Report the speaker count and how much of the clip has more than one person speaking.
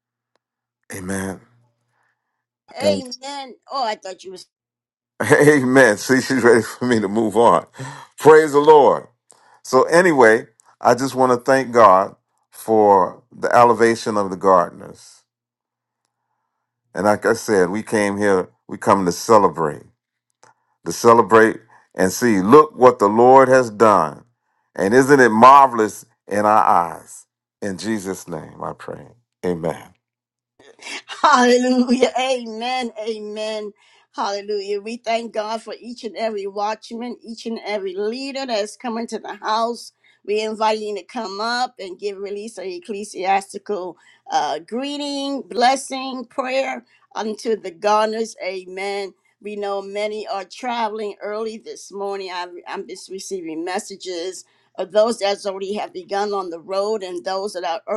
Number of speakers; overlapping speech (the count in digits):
2, no overlap